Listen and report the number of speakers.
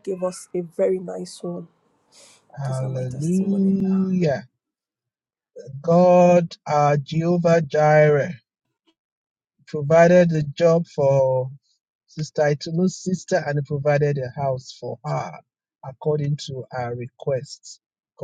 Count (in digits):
2